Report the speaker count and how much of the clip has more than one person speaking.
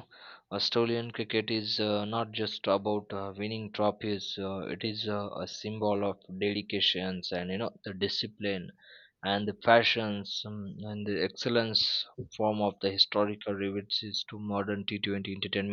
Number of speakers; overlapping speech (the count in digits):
1, no overlap